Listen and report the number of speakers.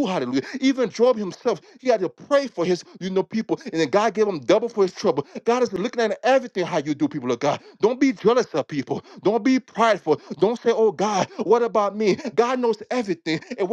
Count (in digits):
1